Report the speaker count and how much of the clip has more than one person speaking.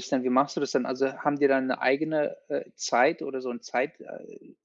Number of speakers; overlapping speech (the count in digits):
1, no overlap